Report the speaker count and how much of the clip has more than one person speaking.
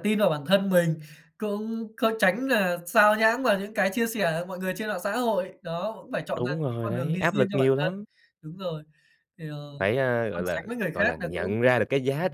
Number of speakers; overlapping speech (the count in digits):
2, about 23%